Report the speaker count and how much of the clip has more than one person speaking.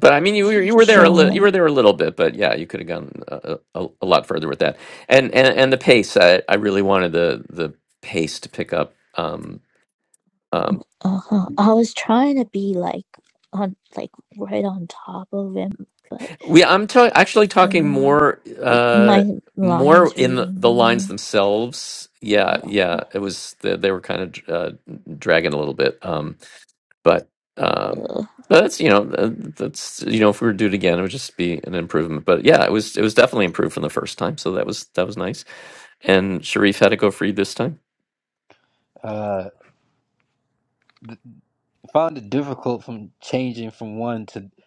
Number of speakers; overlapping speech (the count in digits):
3, about 9%